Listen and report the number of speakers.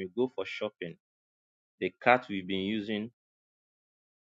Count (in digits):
1